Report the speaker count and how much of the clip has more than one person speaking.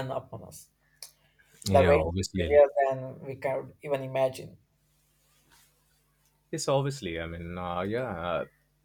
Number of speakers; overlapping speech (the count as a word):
two, about 10%